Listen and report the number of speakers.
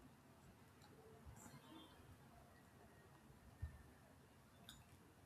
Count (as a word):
zero